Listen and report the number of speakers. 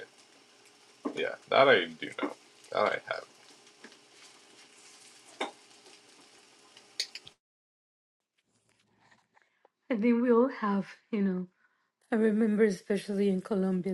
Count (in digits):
2